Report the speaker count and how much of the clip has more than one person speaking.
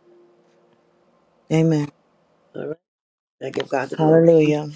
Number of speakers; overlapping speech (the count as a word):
two, about 8%